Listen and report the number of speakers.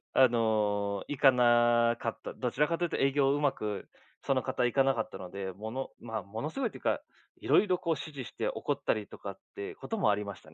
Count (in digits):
1